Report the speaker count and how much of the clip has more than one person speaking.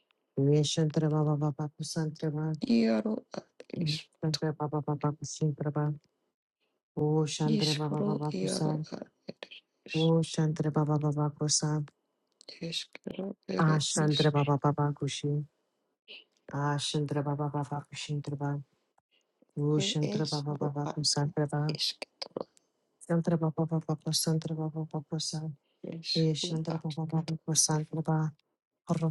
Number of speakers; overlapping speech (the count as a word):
two, about 15%